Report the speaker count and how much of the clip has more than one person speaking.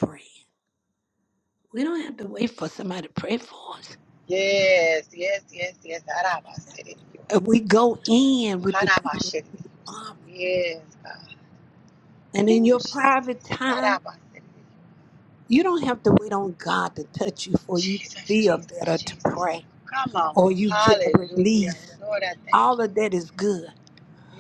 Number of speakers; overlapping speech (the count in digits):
2, about 16%